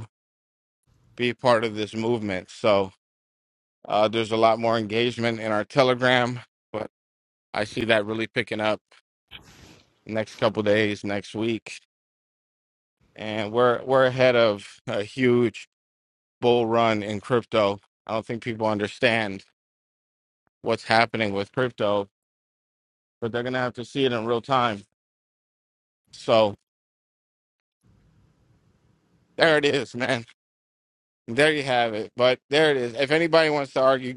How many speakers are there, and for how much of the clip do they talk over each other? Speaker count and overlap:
one, no overlap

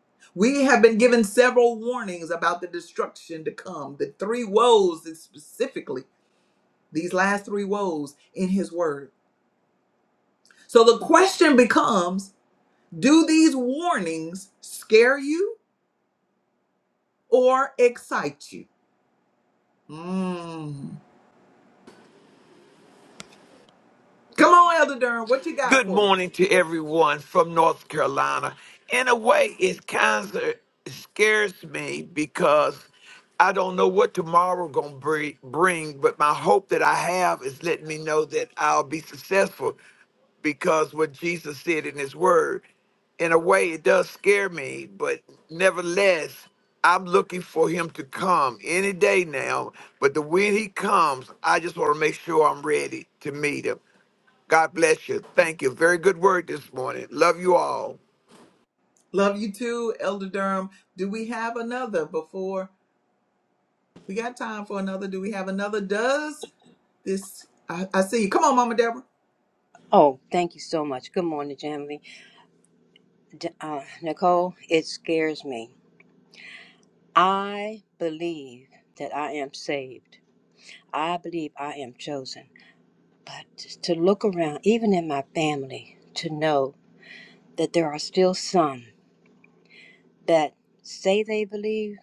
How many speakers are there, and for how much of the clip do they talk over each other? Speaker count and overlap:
three, under 1%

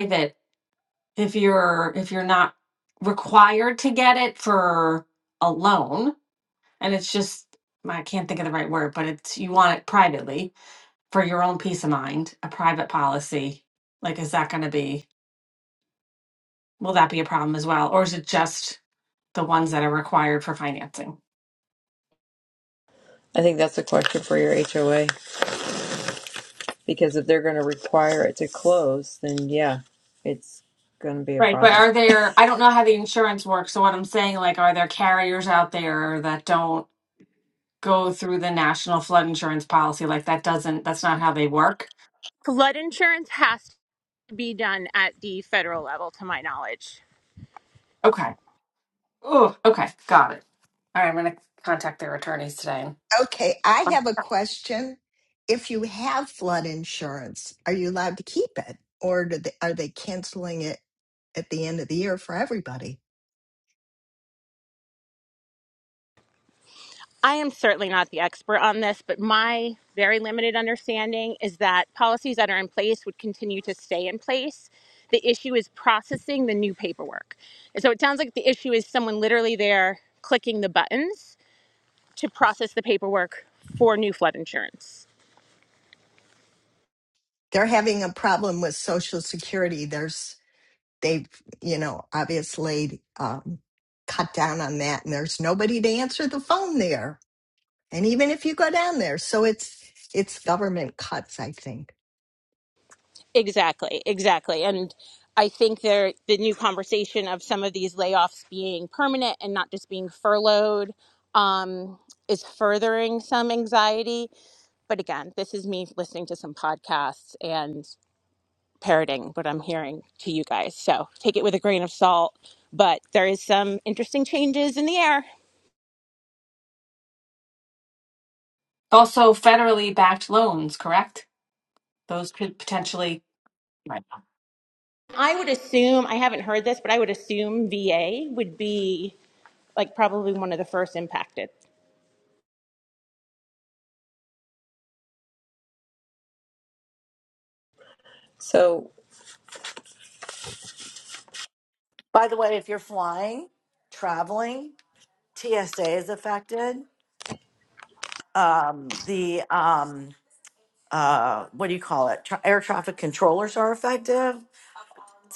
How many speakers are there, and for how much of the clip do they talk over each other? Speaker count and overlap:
five, under 1%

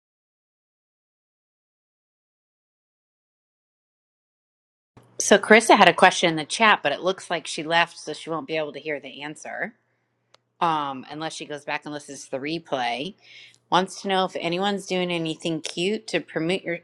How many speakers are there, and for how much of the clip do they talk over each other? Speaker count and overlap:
one, no overlap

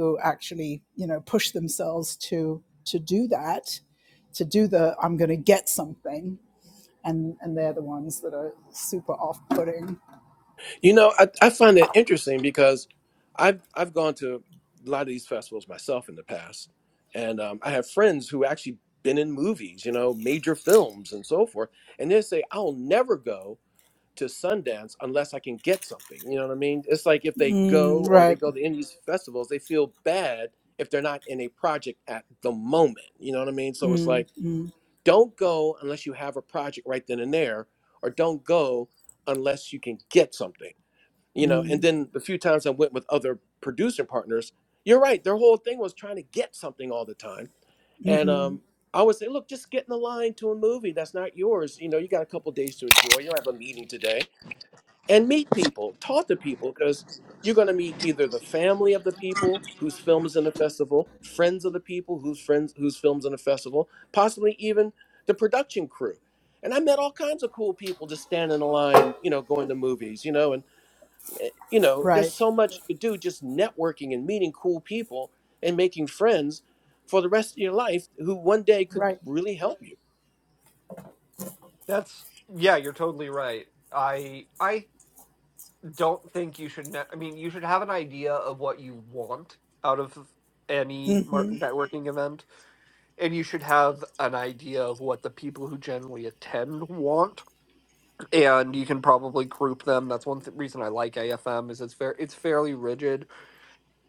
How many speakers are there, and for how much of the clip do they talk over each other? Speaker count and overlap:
three, about 3%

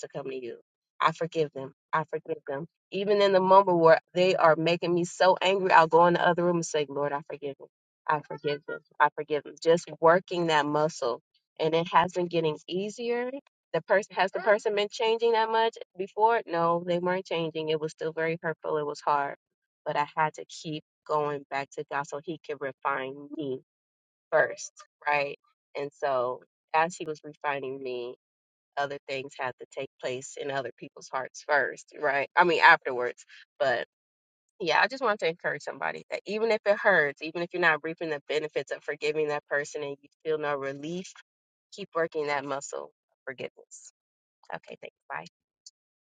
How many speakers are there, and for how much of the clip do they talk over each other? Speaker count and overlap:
one, no overlap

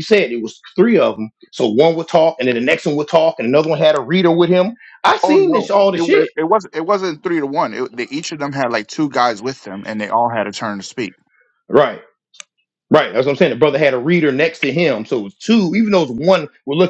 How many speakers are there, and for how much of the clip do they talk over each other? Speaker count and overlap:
two, about 6%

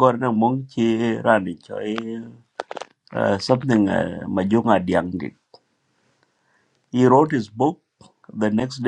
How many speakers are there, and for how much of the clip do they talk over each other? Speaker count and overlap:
one, no overlap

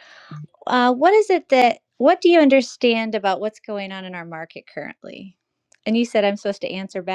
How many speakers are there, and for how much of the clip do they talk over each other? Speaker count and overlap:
one, no overlap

